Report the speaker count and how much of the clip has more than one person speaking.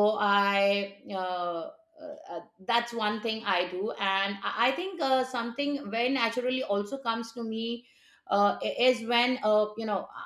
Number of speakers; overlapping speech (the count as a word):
one, no overlap